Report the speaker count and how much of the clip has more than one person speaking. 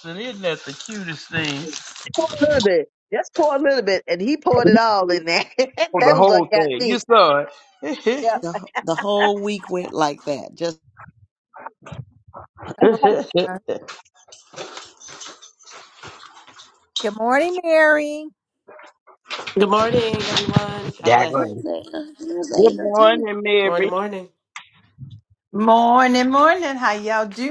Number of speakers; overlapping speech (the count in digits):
6, about 10%